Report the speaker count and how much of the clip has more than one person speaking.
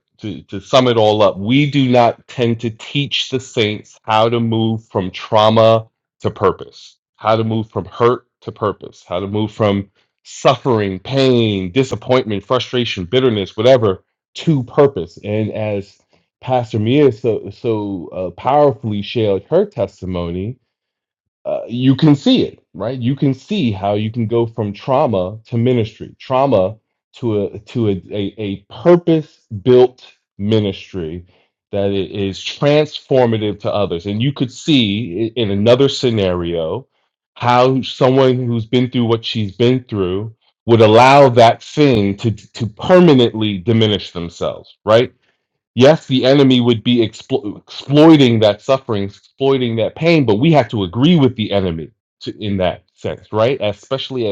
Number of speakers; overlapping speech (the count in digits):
1, no overlap